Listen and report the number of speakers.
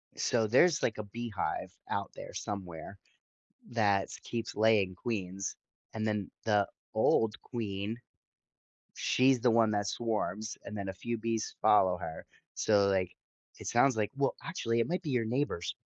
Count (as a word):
one